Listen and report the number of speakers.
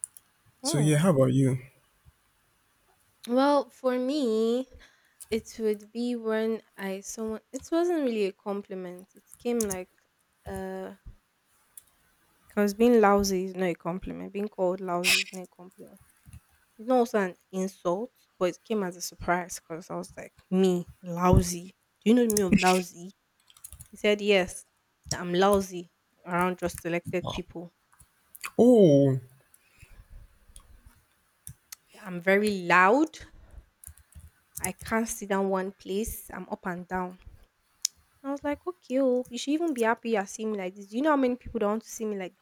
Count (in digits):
2